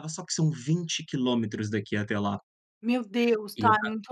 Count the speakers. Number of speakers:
two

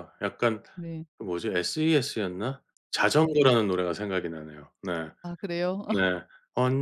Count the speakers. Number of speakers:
two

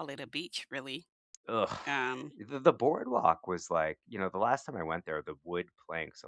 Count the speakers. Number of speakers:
two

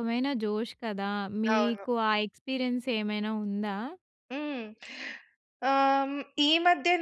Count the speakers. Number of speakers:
two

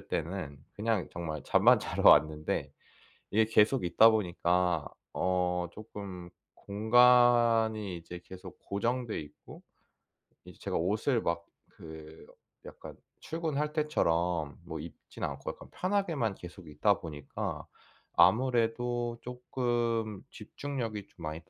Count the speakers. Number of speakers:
one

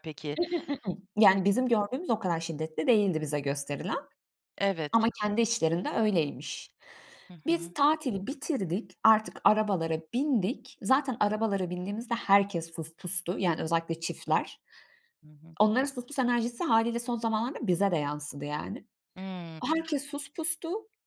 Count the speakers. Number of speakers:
two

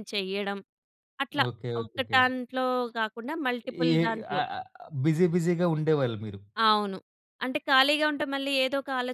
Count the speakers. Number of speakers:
two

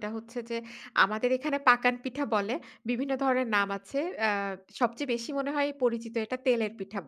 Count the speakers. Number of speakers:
one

